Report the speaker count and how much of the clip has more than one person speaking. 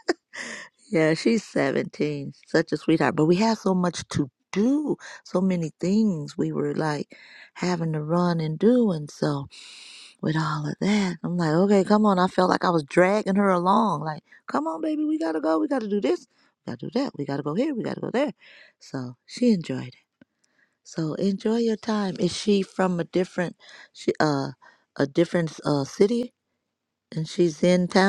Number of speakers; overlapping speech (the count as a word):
one, no overlap